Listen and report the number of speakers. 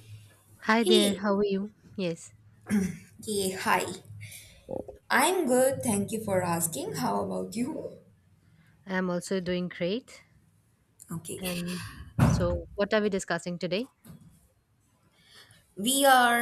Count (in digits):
2